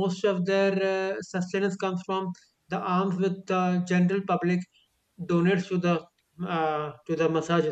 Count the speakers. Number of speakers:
1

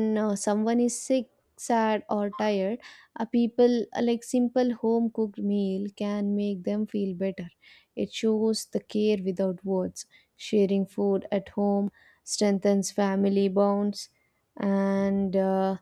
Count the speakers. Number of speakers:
1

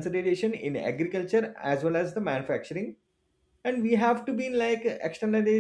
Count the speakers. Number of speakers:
1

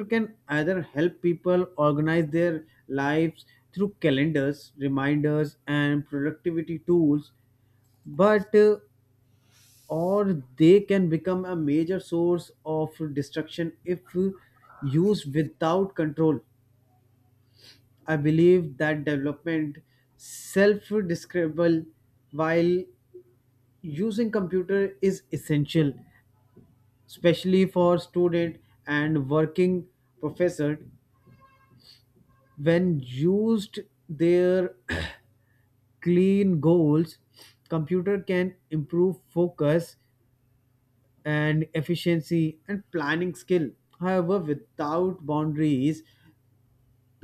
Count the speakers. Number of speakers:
1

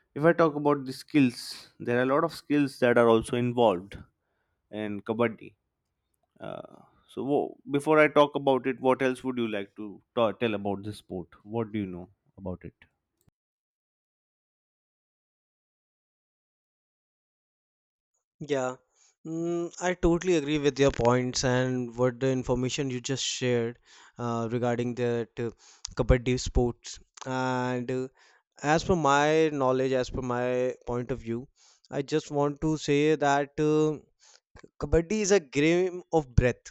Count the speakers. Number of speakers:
2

